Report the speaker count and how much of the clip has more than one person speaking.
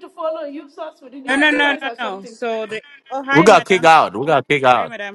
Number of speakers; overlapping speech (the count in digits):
3, about 35%